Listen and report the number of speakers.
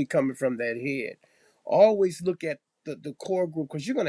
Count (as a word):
one